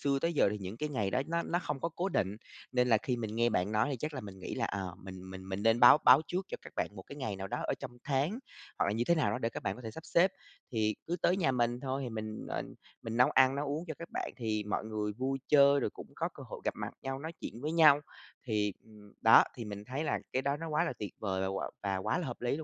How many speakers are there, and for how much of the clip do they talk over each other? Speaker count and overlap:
1, no overlap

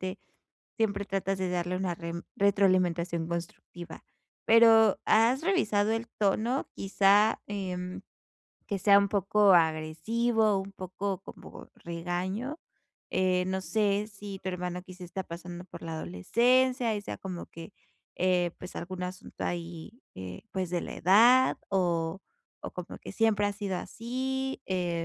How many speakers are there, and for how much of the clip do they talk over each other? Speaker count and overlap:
1, no overlap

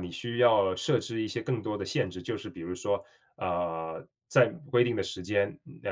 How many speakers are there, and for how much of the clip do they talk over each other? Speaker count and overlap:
1, no overlap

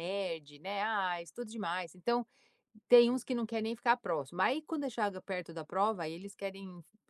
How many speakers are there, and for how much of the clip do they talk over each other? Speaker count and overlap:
1, no overlap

